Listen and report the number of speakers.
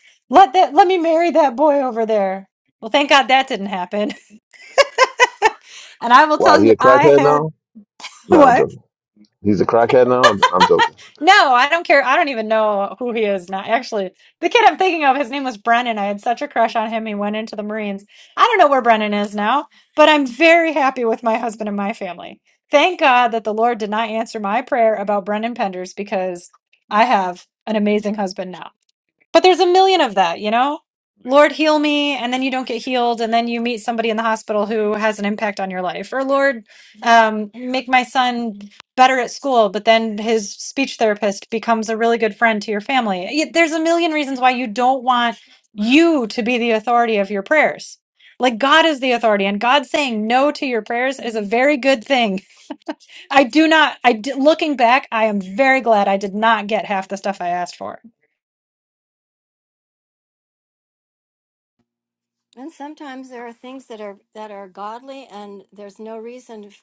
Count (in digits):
3